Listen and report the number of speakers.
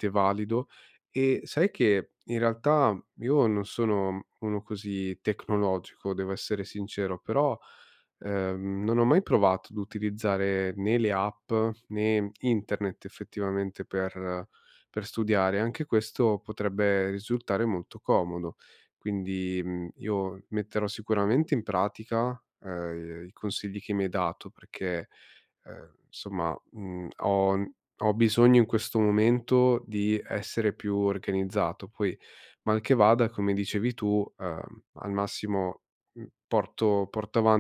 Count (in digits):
1